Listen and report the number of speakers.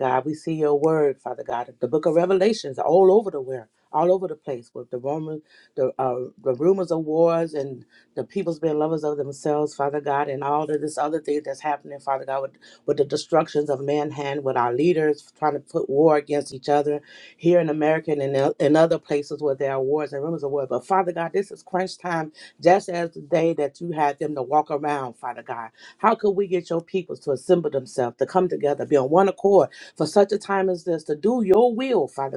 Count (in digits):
1